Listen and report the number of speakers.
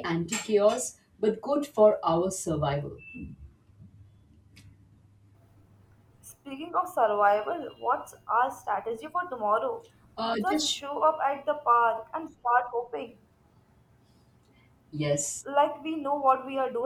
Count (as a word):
two